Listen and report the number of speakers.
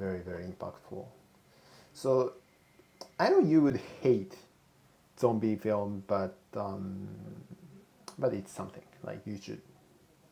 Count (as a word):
one